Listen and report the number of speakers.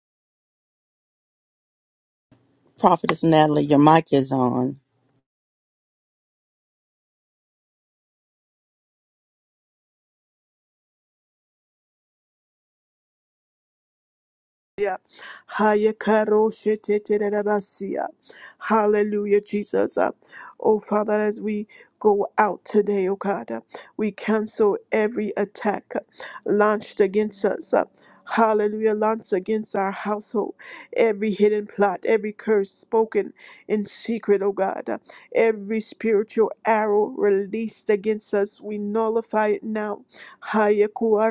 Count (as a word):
two